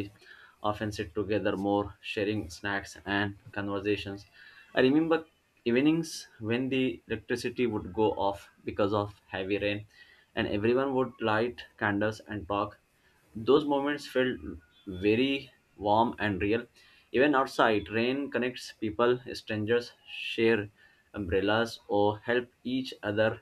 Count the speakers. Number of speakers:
1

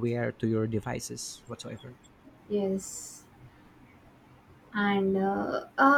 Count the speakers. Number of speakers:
2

